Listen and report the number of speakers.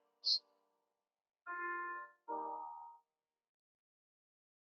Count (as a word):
zero